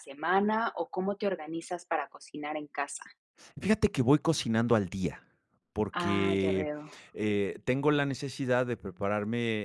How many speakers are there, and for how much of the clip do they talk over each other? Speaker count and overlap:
2, about 7%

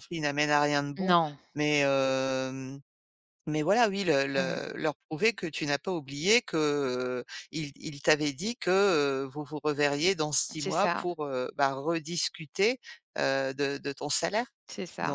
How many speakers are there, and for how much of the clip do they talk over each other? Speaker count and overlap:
2, about 7%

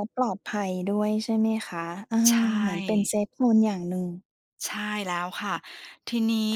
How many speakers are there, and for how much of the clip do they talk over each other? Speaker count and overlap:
2, about 1%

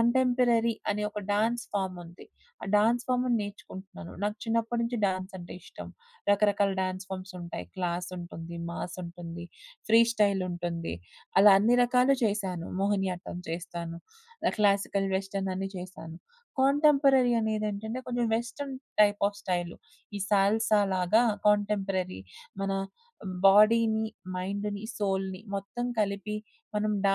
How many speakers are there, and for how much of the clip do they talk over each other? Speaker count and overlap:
1, no overlap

